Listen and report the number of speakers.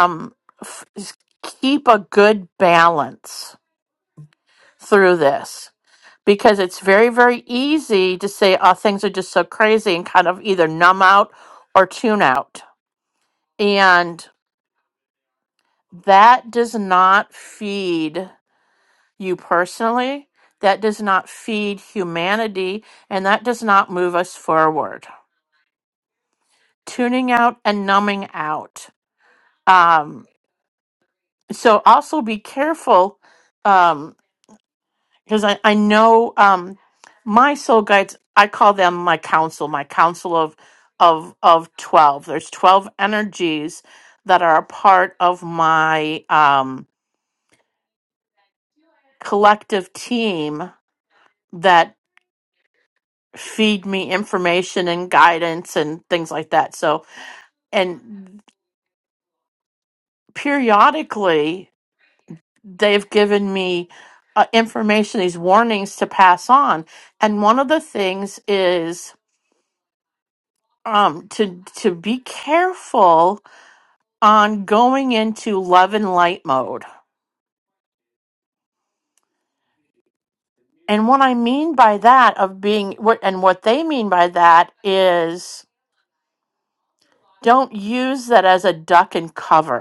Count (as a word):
one